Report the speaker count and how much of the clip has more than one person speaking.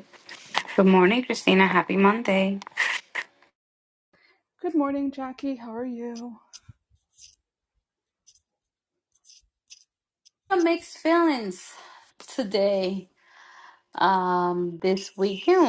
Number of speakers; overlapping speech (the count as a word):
two, no overlap